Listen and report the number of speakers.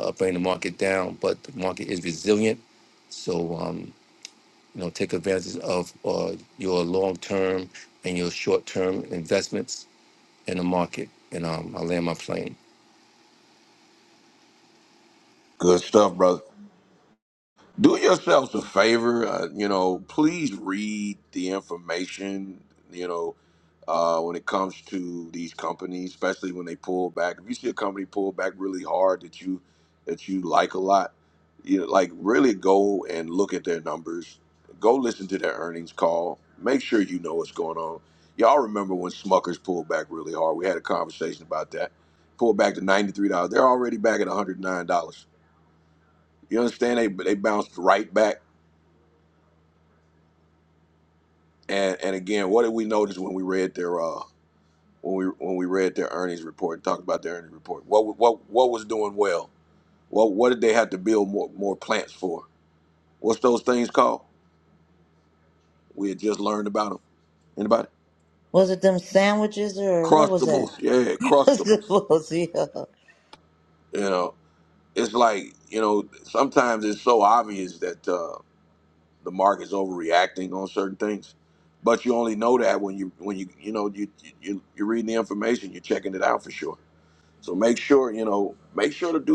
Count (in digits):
3